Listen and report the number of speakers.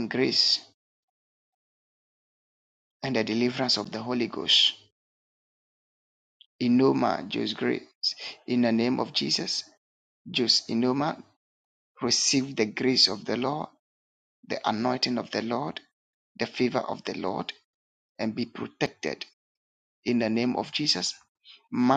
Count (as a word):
one